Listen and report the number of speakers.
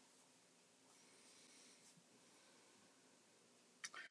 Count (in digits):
0